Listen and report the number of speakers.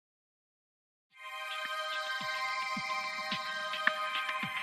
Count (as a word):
zero